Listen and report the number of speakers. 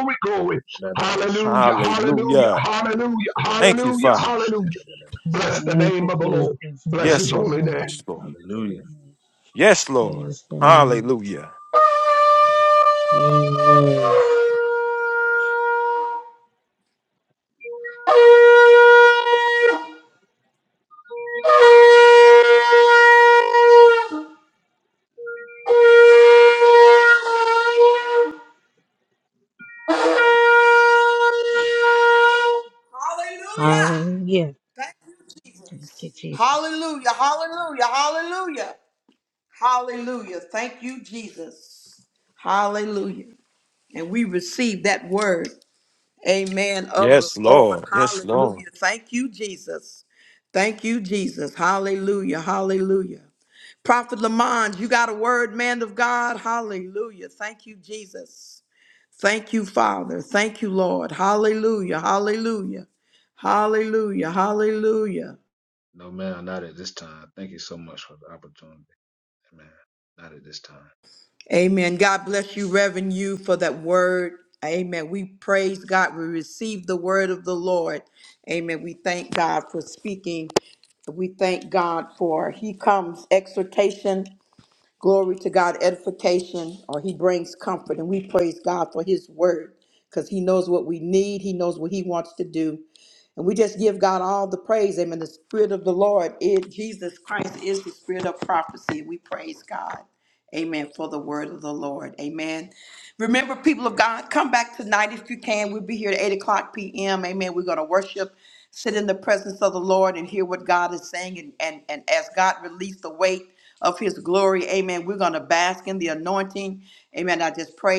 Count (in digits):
5